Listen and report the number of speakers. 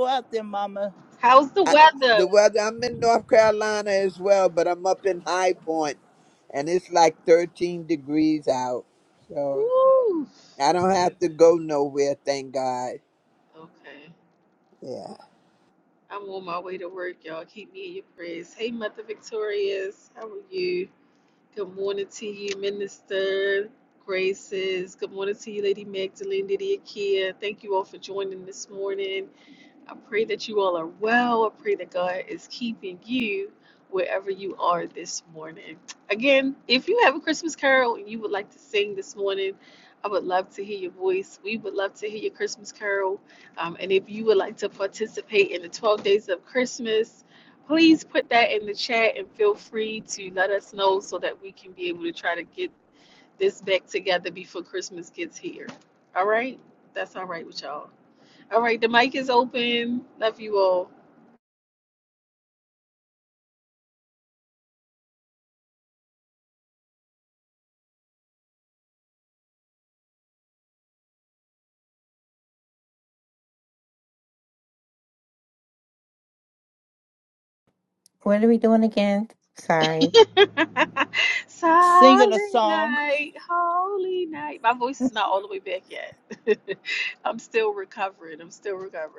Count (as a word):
four